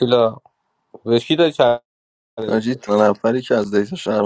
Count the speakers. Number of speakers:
2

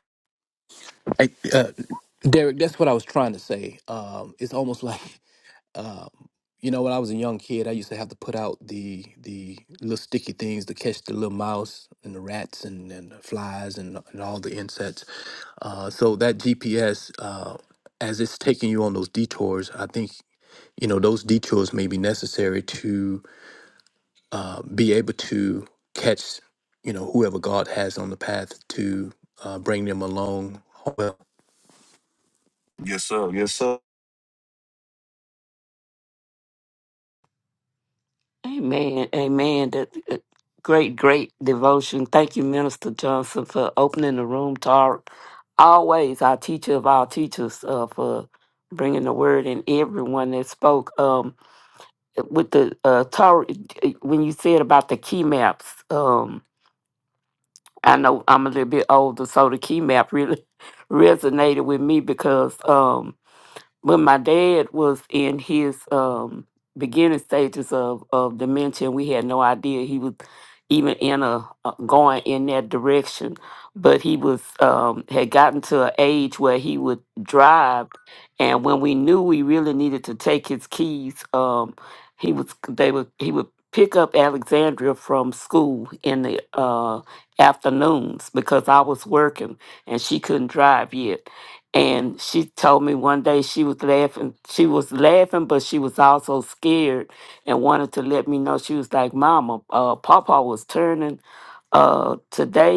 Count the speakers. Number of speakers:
3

